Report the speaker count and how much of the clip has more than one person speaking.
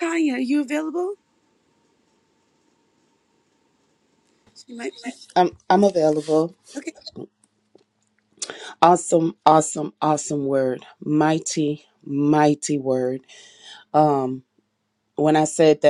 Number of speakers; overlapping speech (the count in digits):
2, no overlap